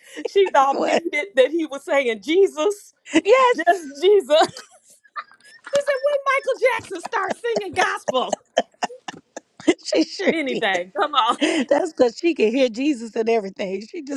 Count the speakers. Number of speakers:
two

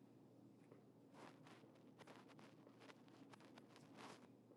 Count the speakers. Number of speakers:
zero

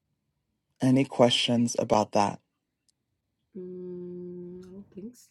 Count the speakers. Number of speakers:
two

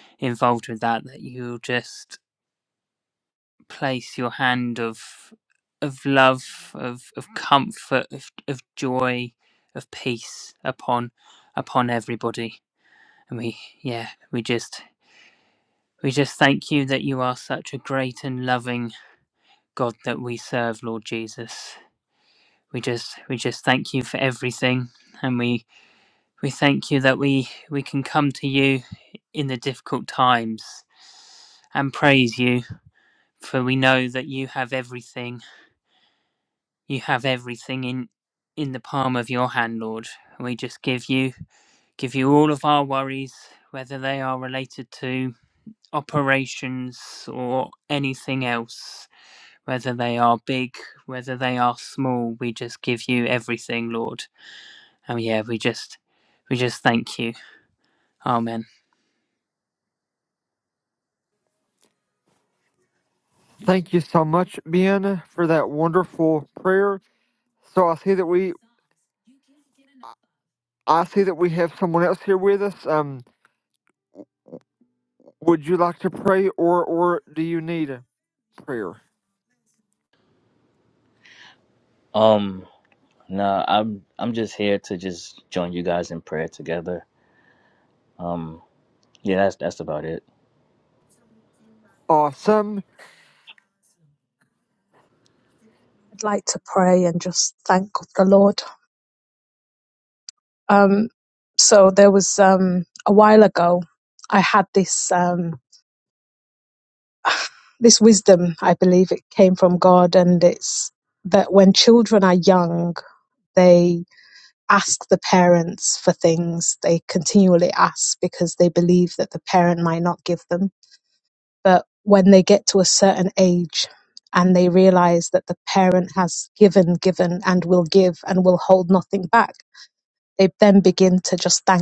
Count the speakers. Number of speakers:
four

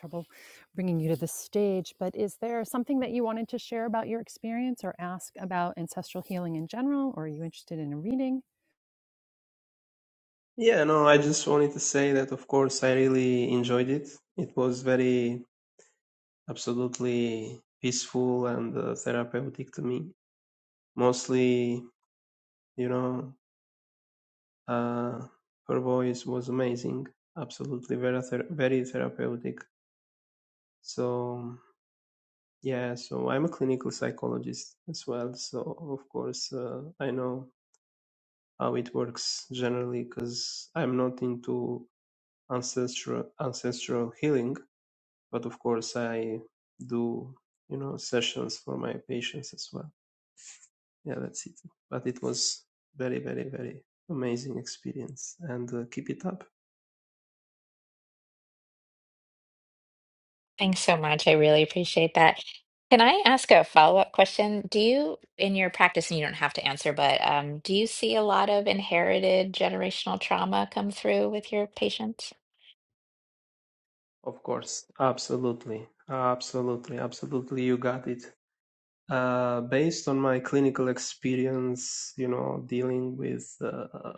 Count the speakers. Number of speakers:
three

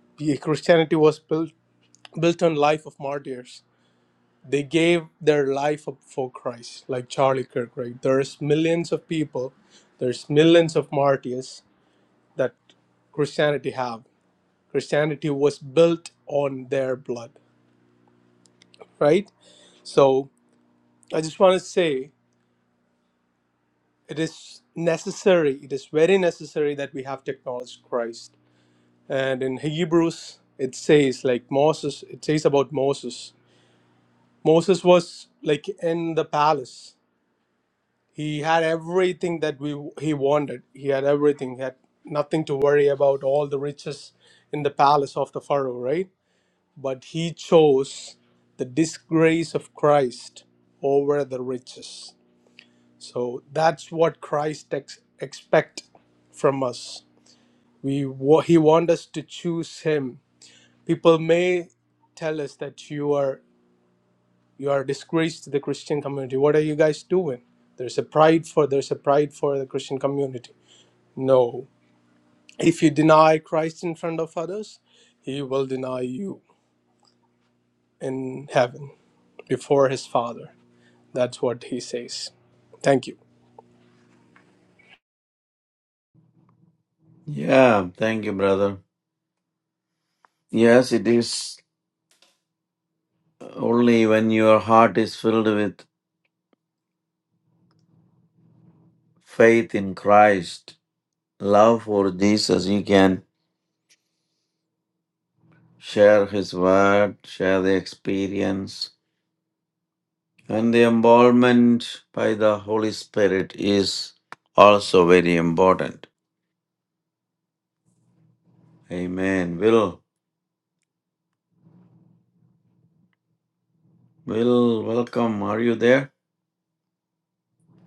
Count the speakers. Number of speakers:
two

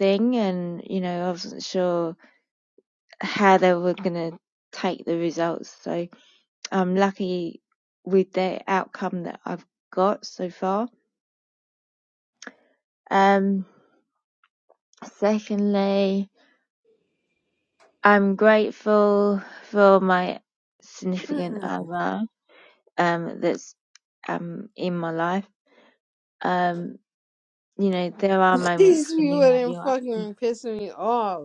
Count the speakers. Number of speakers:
two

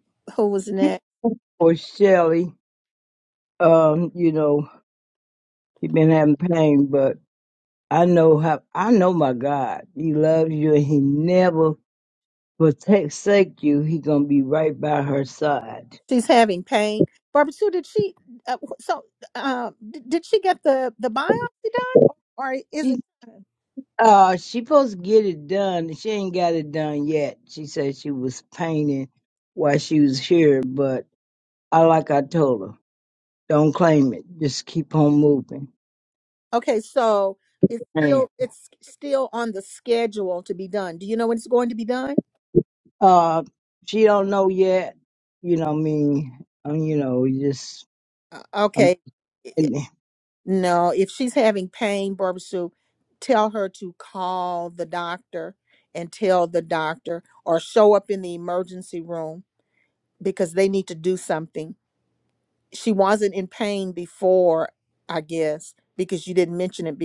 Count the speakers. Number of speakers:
two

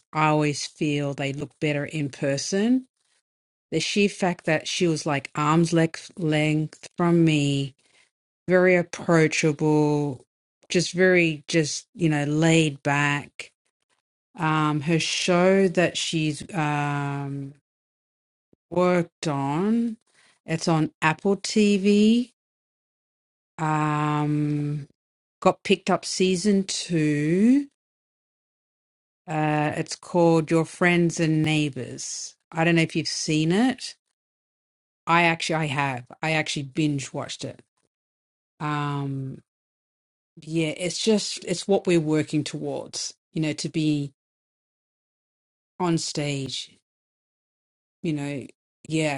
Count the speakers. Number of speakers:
one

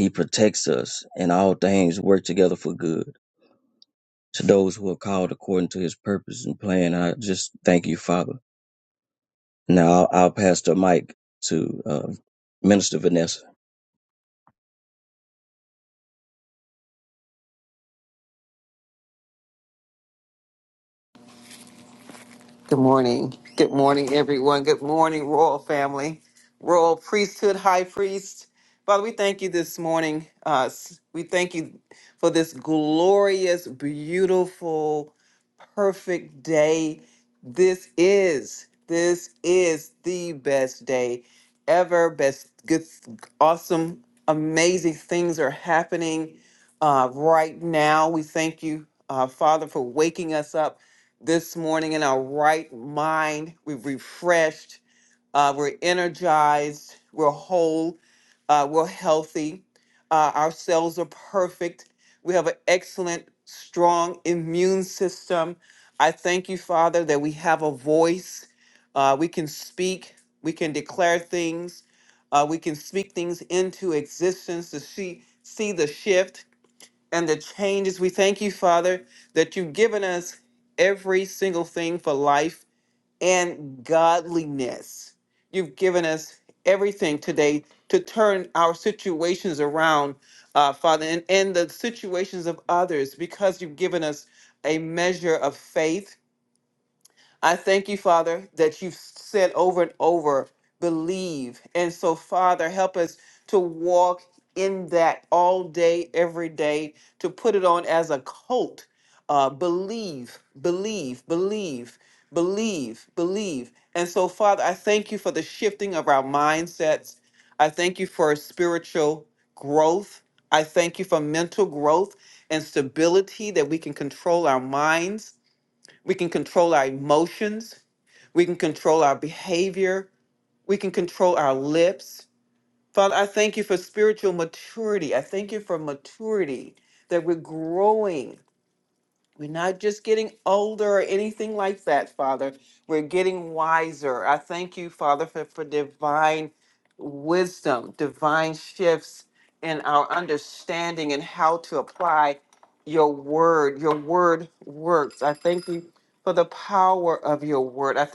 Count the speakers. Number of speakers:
two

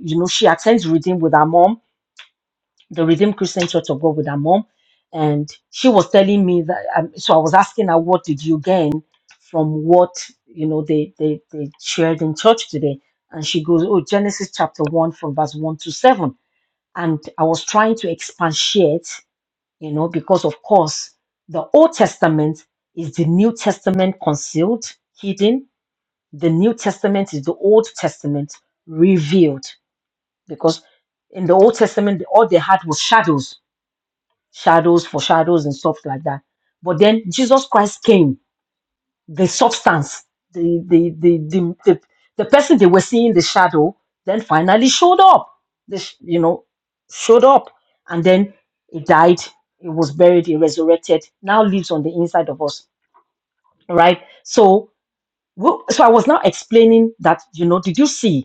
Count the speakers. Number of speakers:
one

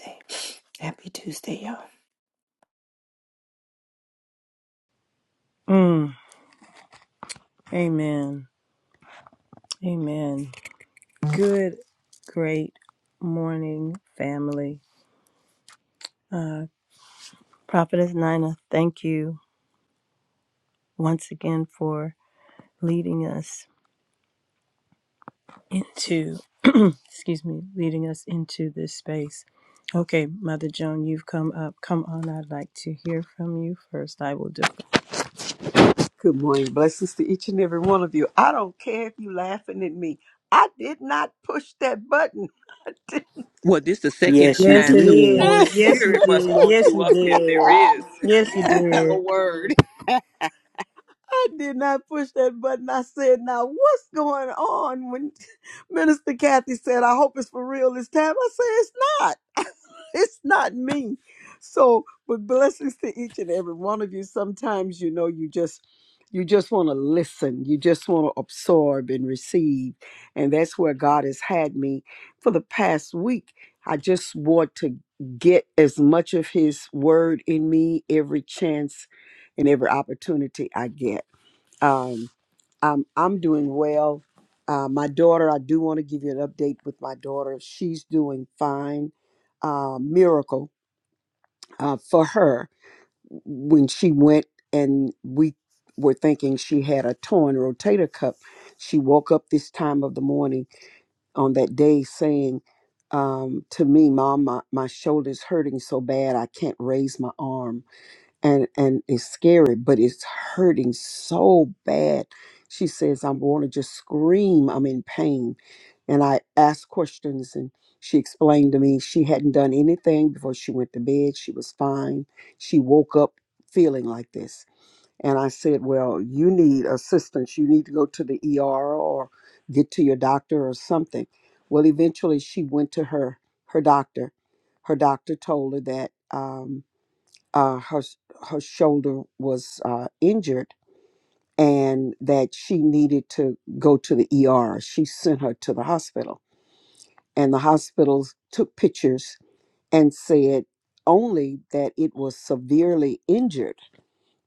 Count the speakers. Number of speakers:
four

